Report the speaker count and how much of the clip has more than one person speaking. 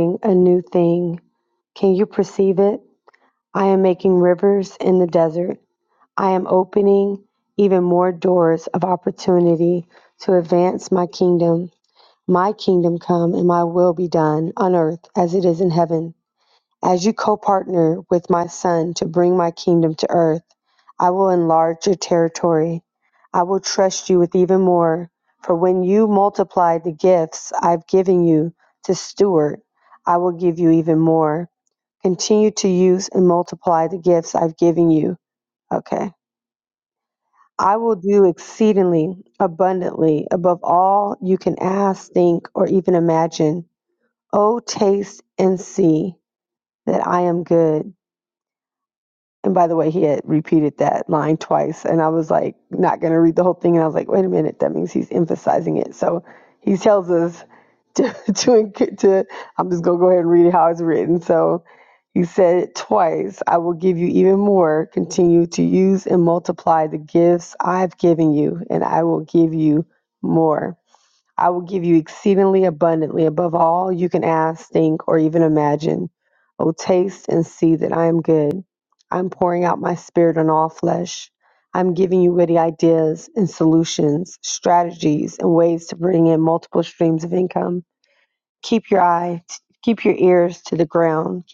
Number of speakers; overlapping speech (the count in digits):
1, no overlap